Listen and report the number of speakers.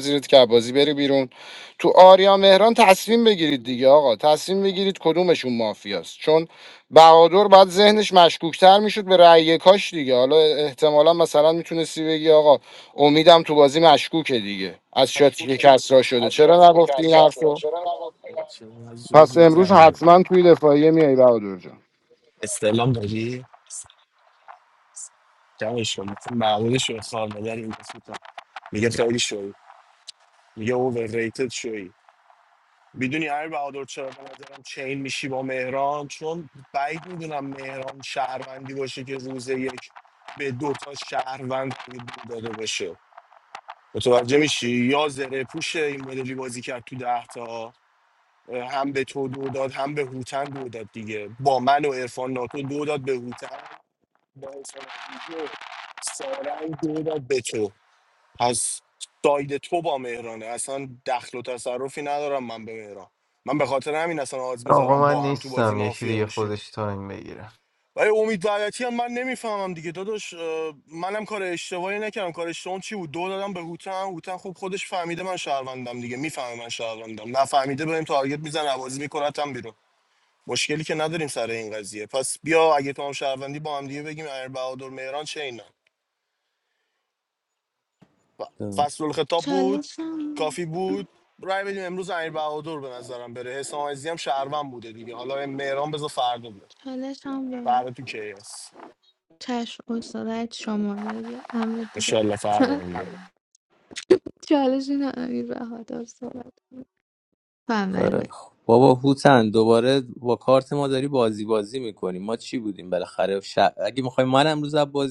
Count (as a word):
five